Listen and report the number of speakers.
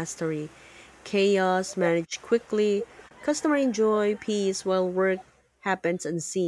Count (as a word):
one